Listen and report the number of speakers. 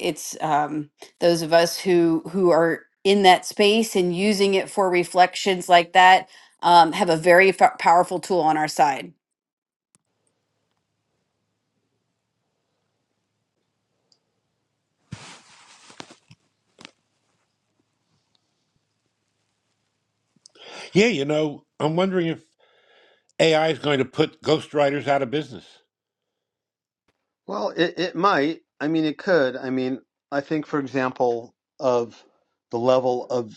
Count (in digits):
3